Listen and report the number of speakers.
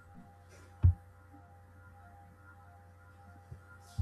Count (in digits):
0